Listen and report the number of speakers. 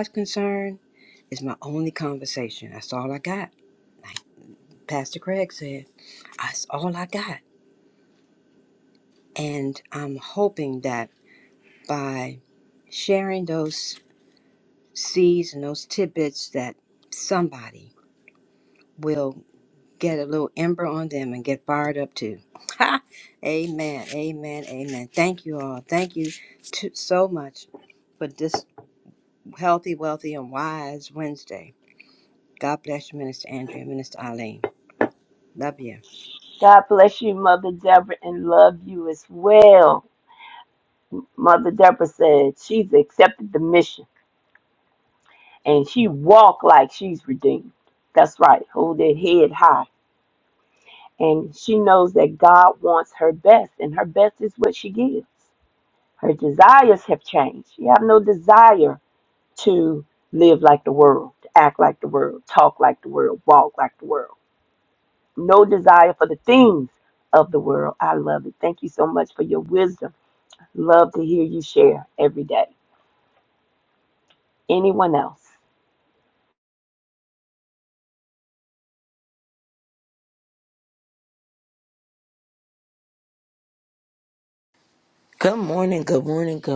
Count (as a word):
three